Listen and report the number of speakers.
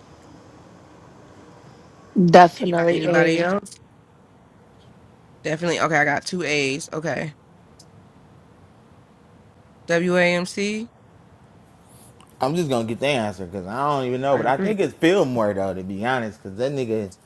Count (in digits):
3